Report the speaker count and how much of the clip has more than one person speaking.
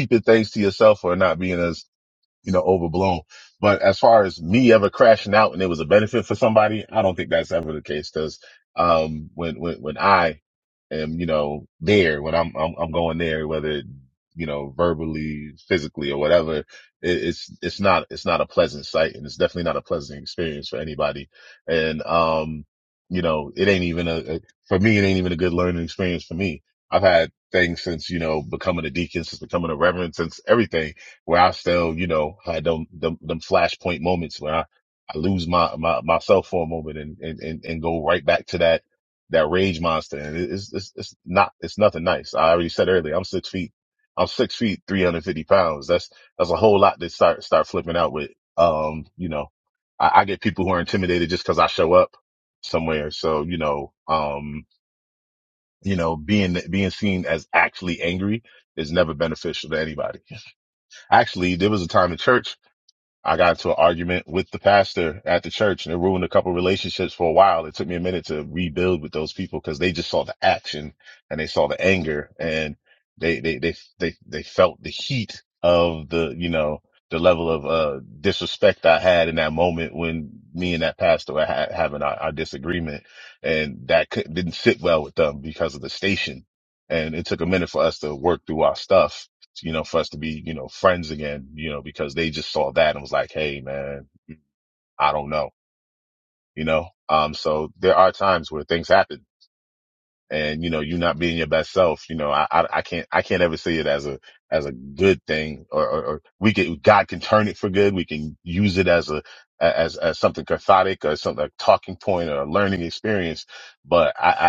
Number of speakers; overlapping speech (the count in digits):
1, no overlap